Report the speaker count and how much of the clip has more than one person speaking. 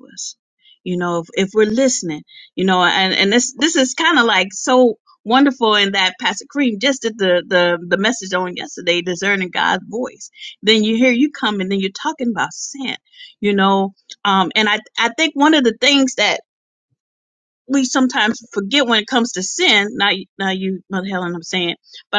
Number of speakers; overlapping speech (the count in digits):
1, no overlap